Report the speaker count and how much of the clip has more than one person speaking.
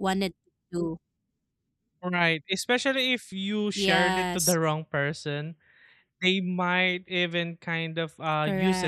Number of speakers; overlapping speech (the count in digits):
2, about 14%